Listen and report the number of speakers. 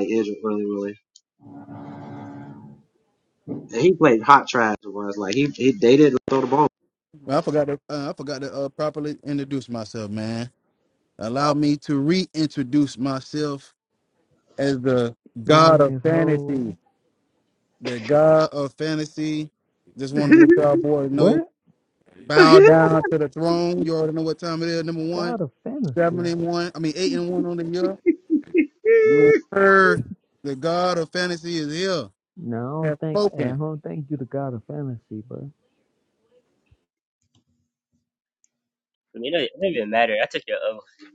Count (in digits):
4